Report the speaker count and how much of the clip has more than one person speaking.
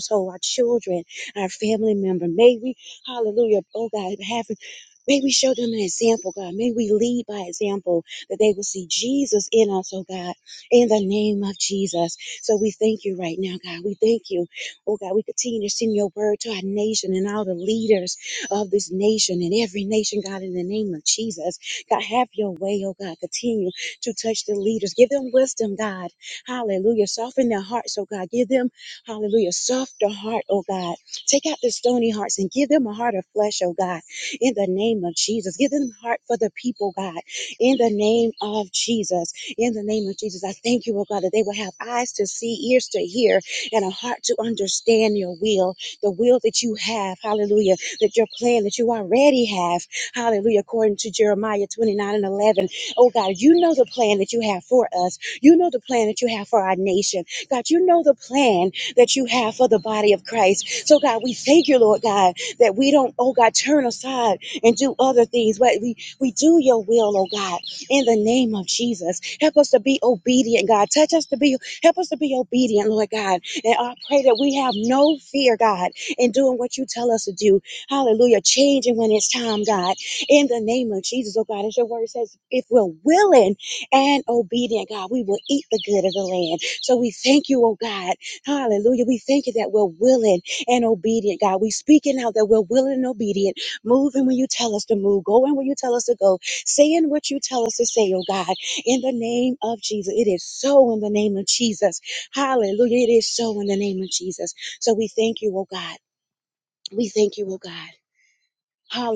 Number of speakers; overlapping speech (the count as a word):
one, no overlap